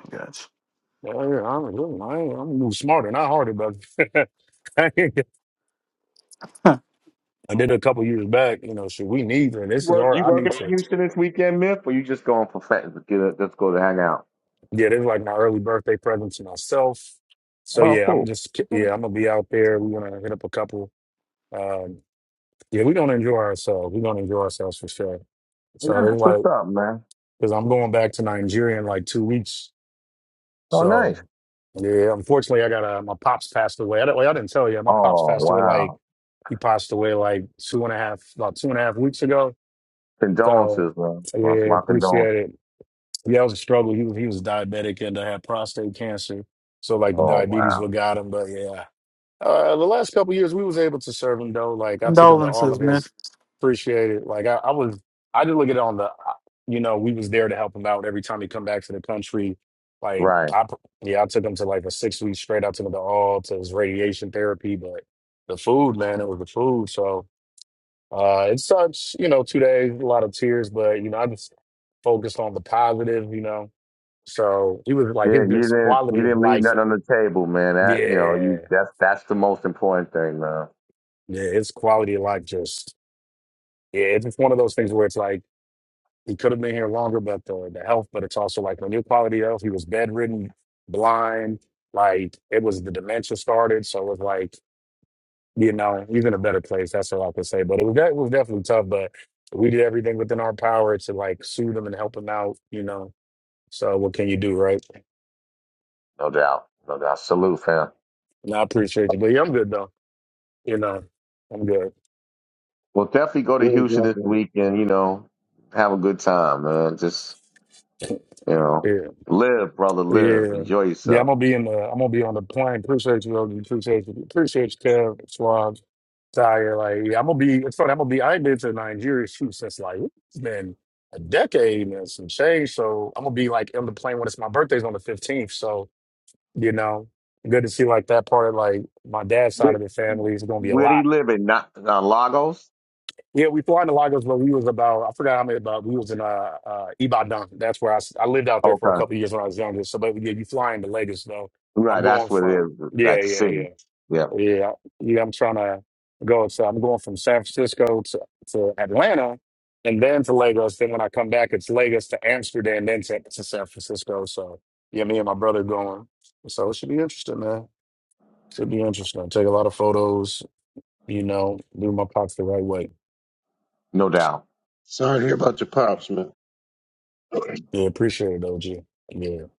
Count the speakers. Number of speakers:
4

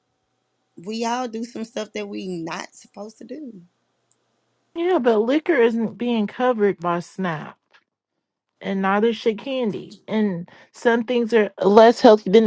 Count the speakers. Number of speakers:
2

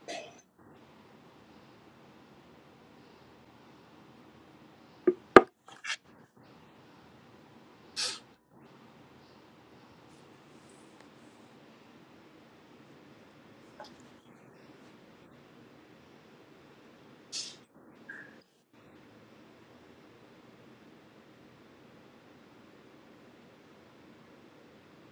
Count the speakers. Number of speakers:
0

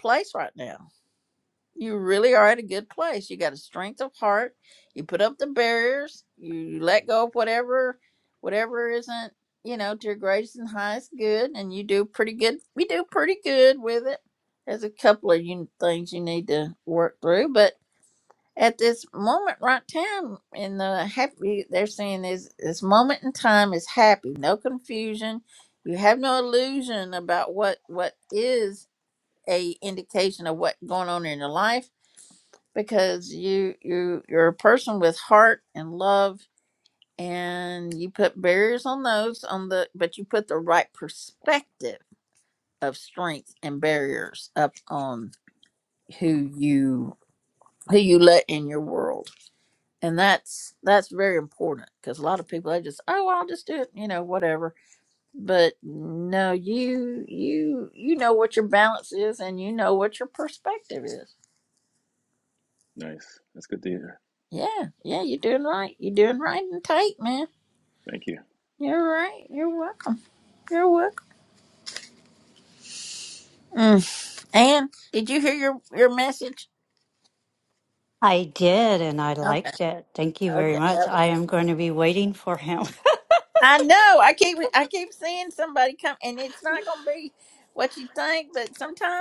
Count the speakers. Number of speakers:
3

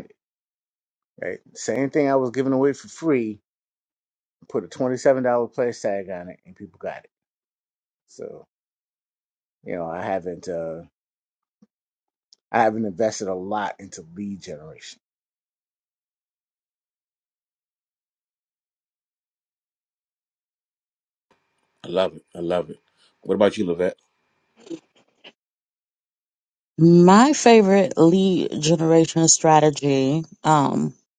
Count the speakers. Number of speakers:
3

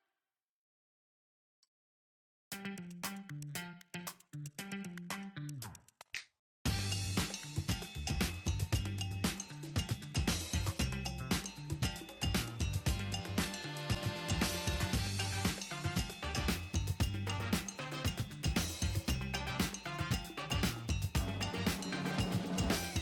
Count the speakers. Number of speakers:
0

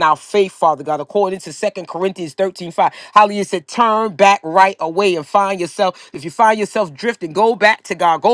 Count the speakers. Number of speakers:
1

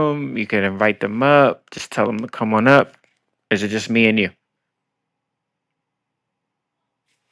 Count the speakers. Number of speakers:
1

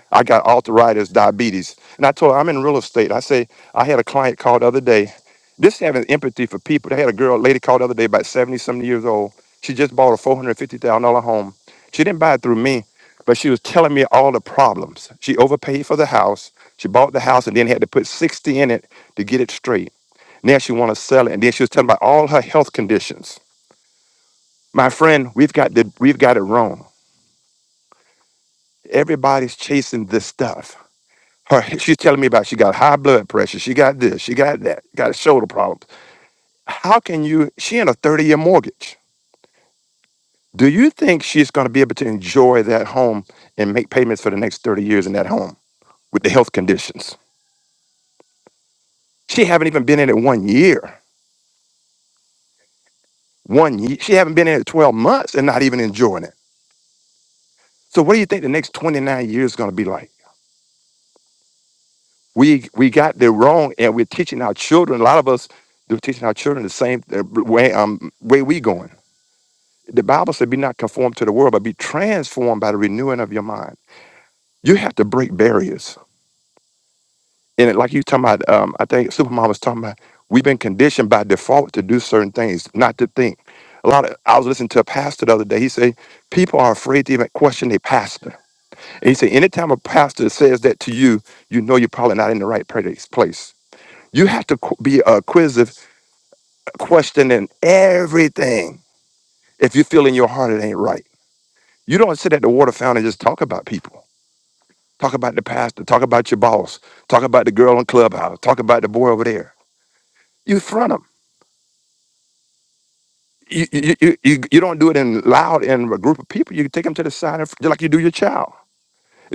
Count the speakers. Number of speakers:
1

